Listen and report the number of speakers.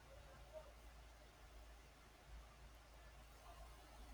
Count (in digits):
0